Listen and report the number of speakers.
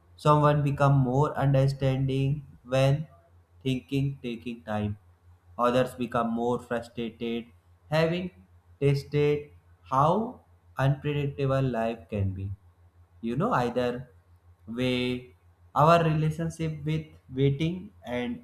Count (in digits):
1